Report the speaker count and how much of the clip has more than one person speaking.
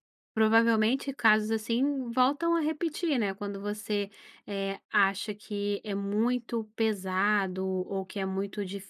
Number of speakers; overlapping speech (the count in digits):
1, no overlap